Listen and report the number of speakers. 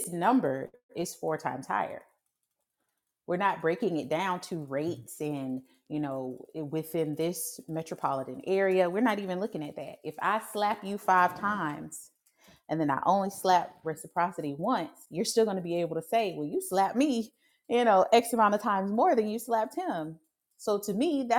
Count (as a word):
one